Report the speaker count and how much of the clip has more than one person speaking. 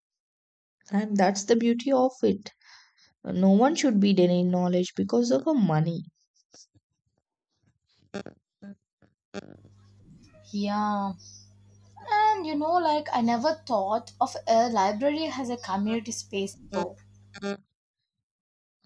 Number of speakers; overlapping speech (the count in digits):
2, no overlap